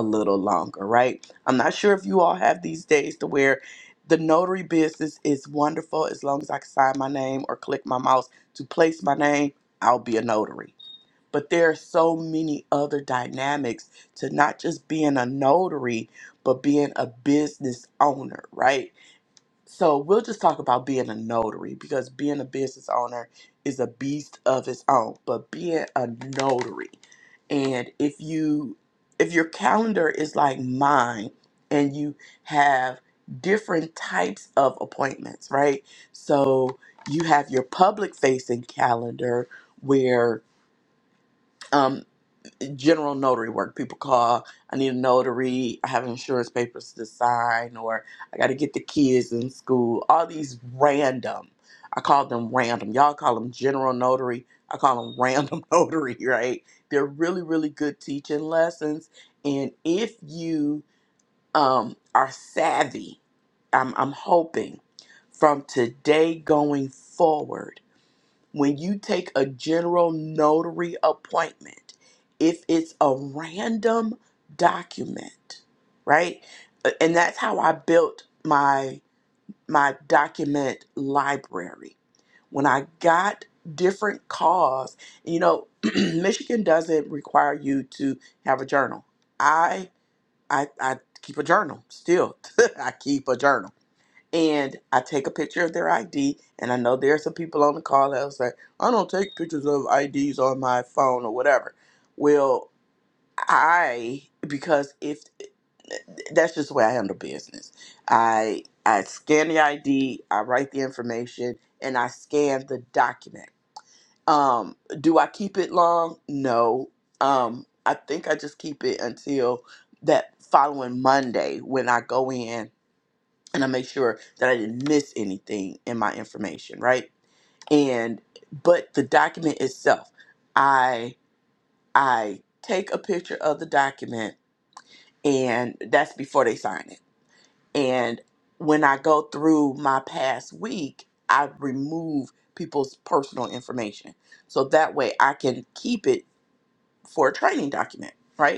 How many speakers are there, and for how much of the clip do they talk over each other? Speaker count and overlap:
1, no overlap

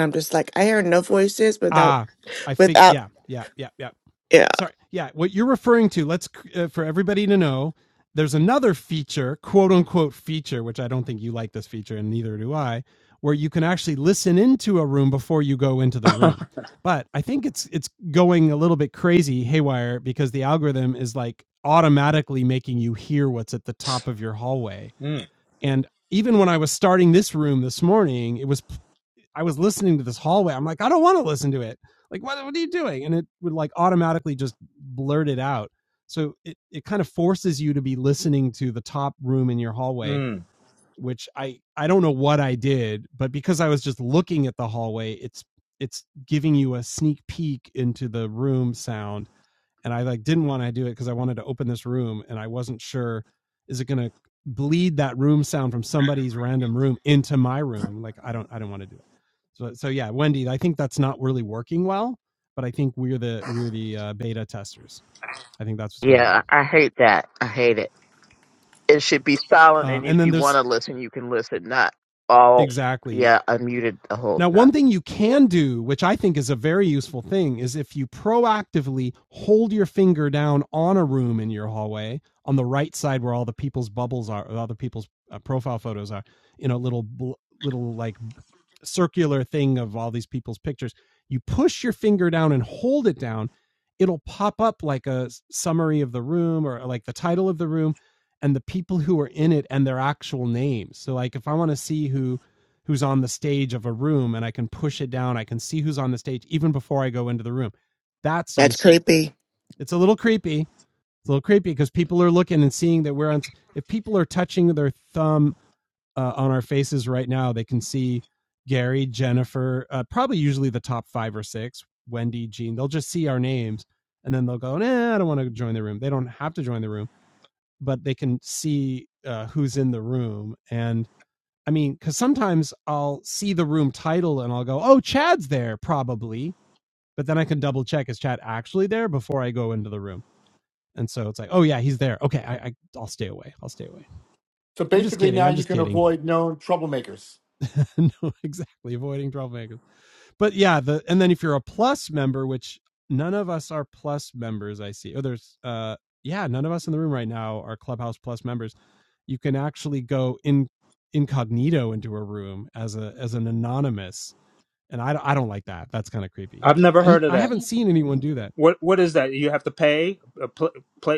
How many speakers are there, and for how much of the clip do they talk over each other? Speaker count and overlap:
5, about 3%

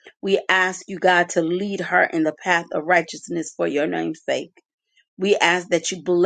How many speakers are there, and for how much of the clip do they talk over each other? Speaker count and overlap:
1, no overlap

